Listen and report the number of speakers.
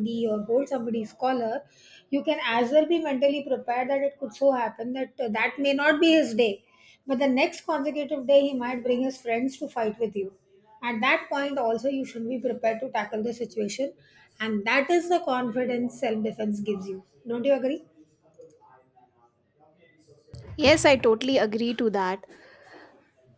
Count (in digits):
2